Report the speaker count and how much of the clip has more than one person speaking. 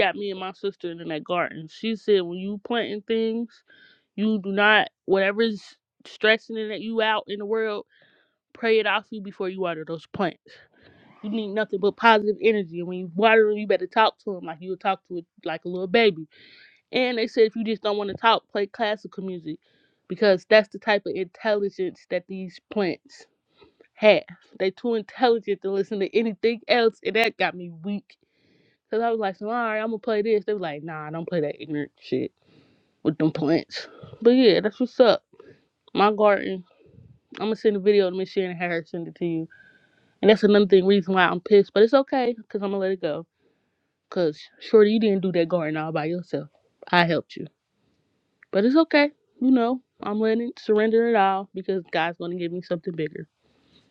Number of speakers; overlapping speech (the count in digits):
1, no overlap